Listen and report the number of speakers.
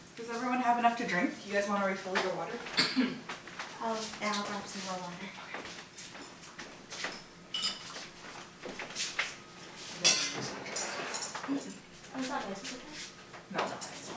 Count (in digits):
2